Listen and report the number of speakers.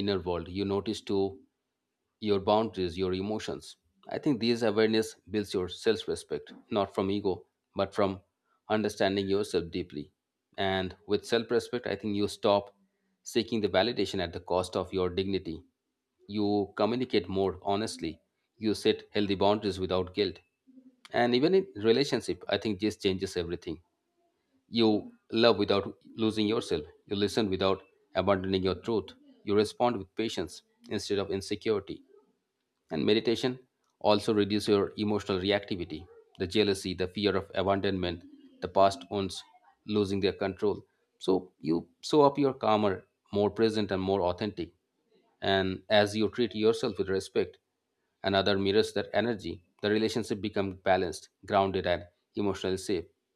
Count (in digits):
1